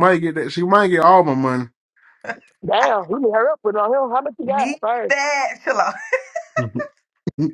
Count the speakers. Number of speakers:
three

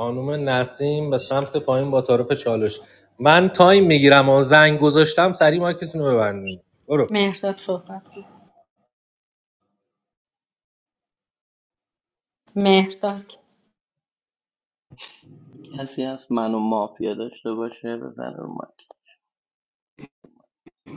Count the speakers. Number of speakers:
three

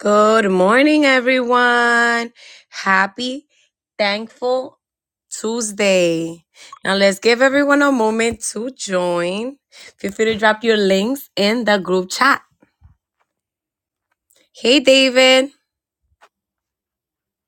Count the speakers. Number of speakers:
one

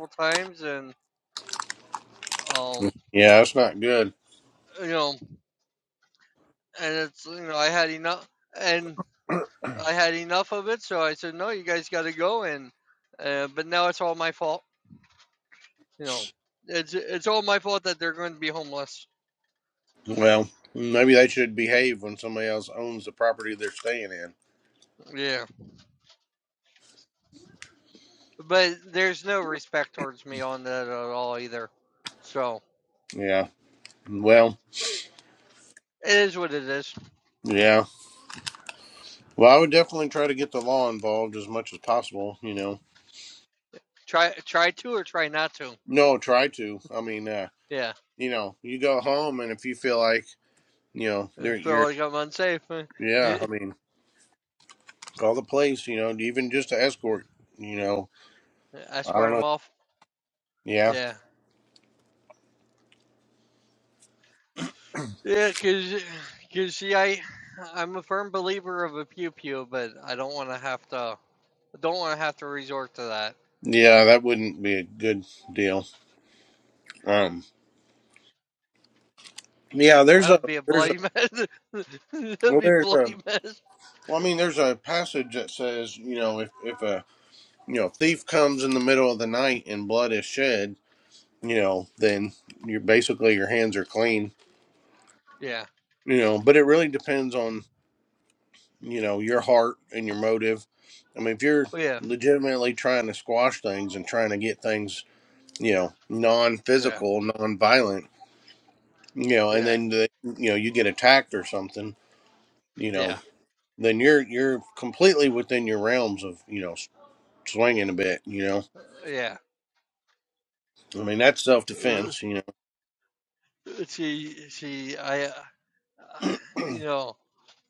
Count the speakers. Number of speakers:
two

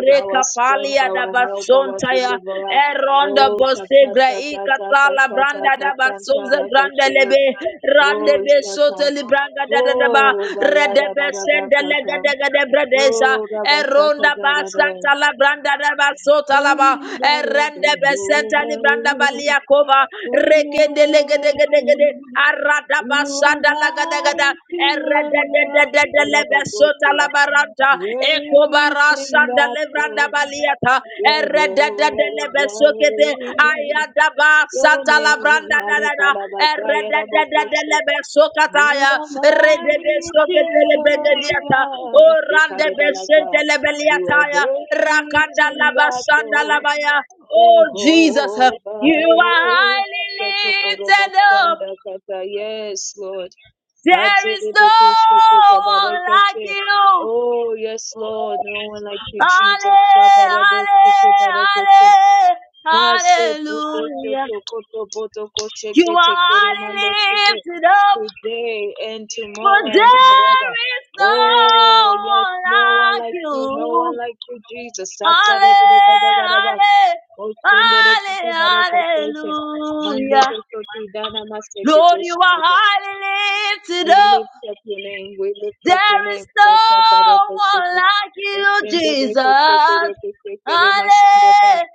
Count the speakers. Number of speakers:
two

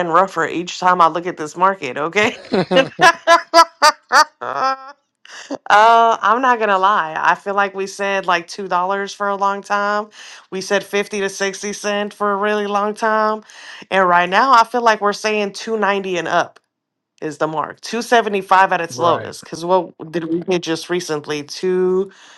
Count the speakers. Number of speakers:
two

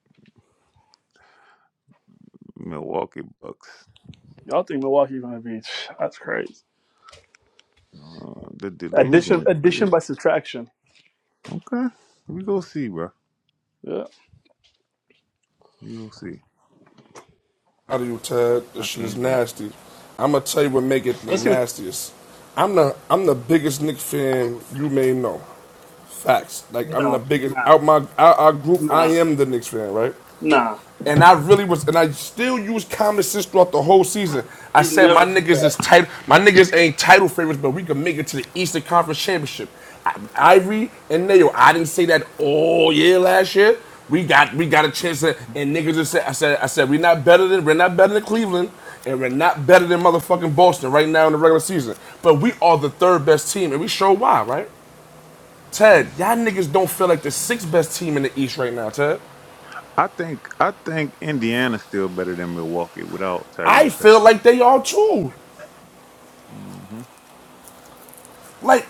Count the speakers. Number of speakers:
three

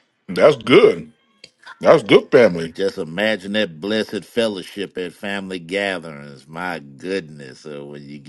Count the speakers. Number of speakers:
two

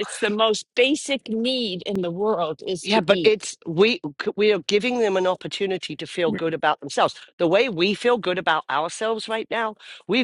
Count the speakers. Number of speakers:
two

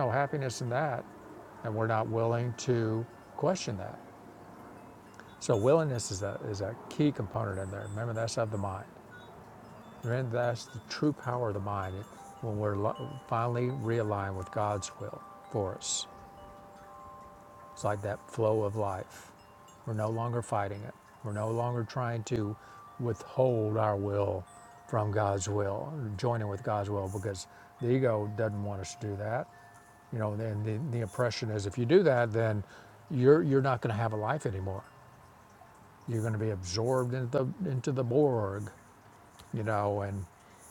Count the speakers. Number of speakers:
one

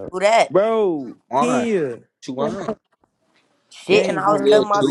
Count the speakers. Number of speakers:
three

